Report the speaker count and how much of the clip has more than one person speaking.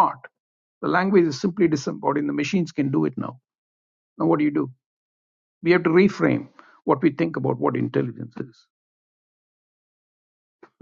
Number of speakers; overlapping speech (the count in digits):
1, no overlap